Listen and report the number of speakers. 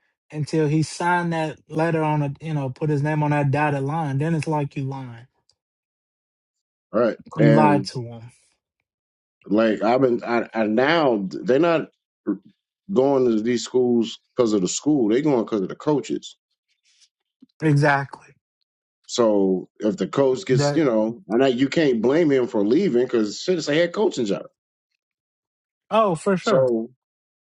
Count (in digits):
2